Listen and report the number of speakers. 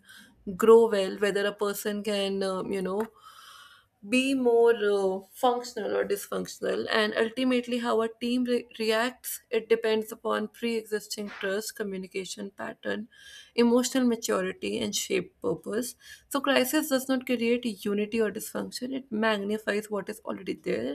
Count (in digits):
1